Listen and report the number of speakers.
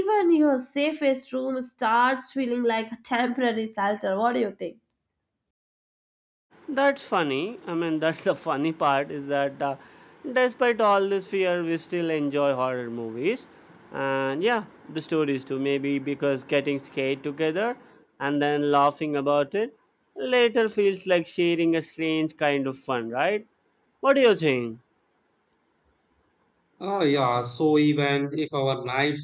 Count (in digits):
3